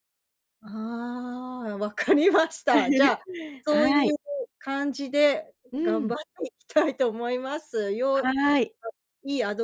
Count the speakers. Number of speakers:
two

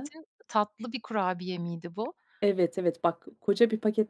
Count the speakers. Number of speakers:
two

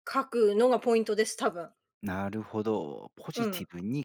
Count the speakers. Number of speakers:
two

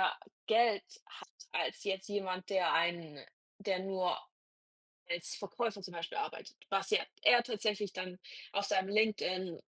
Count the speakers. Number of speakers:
one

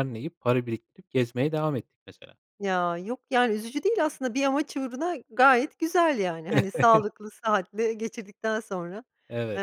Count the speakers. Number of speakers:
two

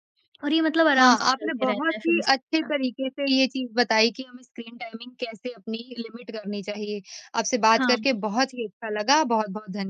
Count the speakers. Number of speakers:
two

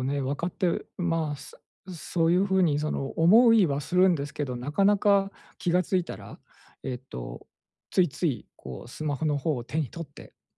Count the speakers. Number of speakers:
one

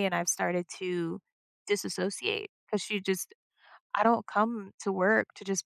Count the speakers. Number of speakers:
one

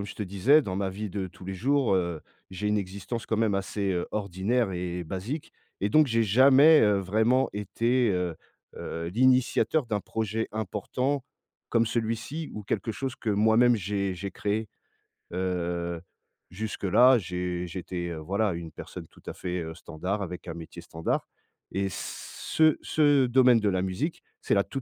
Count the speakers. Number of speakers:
one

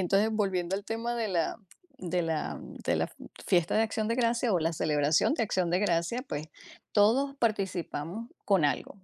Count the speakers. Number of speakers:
one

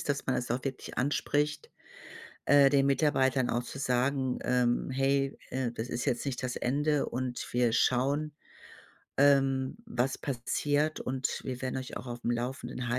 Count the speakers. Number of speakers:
one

